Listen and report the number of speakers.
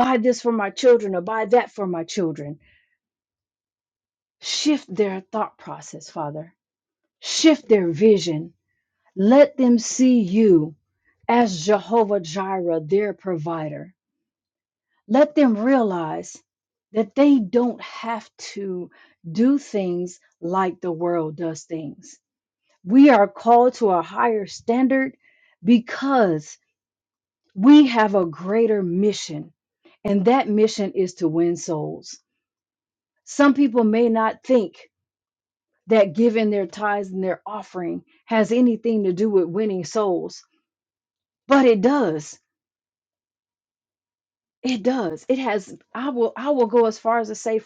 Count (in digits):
1